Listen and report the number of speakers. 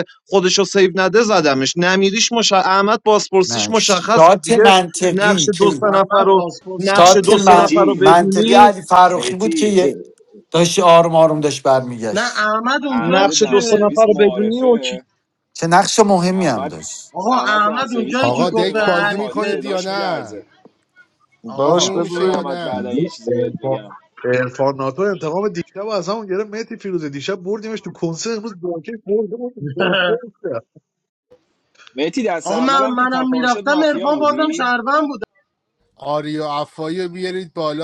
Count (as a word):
six